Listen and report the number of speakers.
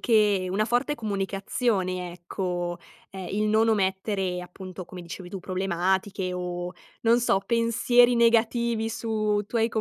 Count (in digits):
1